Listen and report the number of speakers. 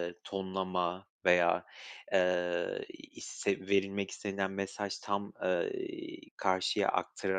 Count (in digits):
1